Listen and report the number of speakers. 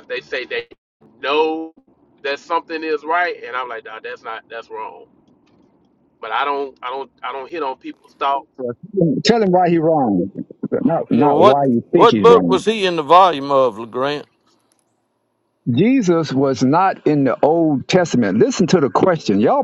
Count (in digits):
3